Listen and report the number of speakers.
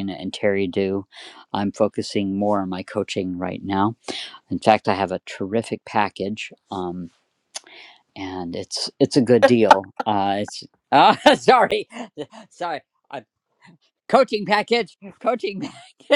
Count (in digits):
1